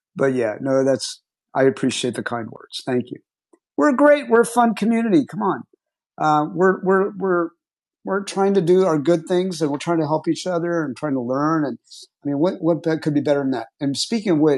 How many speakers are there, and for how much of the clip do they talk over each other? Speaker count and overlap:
one, no overlap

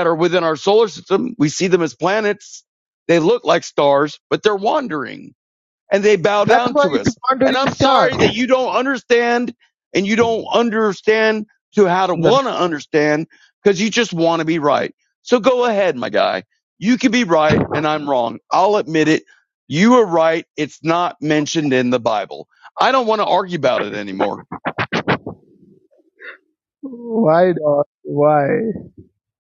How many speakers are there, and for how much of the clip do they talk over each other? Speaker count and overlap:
two, about 6%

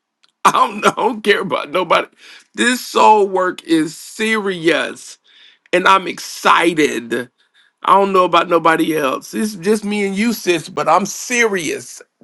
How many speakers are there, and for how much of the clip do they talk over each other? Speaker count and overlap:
one, no overlap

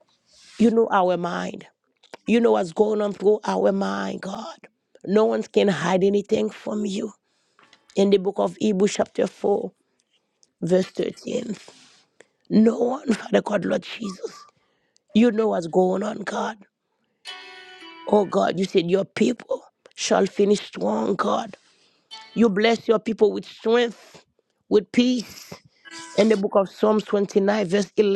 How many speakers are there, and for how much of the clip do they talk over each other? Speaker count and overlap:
one, no overlap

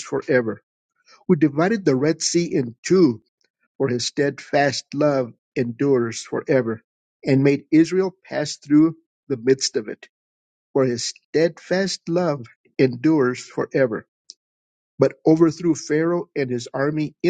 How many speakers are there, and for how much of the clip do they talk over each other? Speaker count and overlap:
one, no overlap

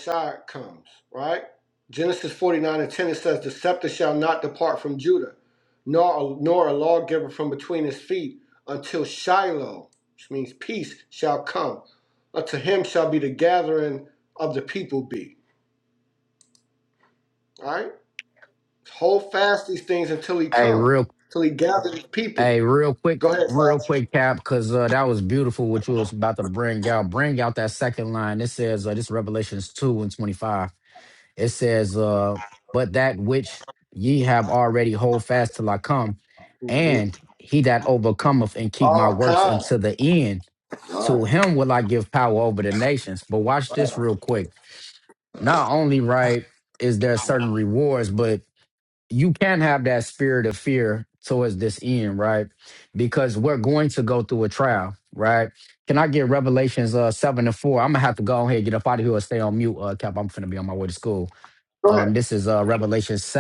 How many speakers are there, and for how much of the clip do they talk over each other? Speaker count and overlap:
two, about 6%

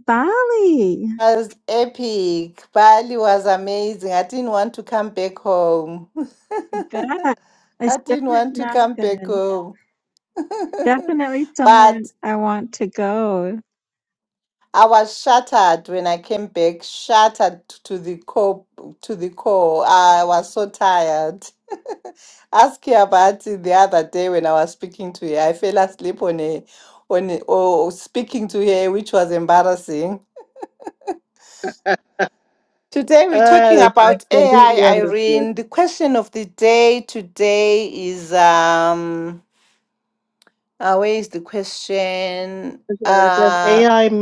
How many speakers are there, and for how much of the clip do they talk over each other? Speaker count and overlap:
three, about 11%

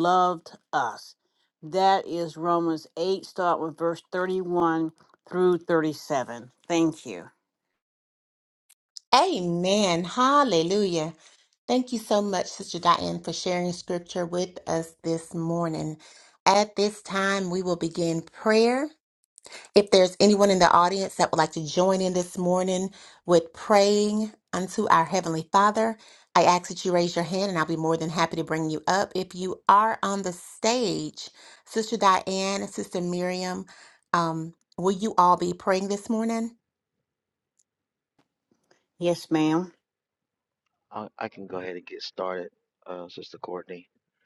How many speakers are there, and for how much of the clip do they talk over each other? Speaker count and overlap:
three, no overlap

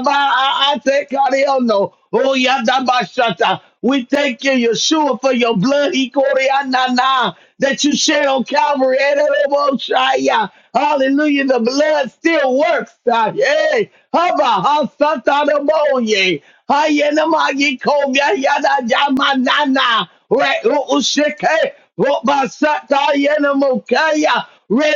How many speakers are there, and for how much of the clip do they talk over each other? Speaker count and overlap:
one, no overlap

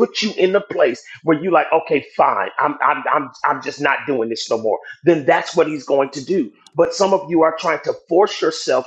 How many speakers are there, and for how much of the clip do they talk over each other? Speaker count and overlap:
one, no overlap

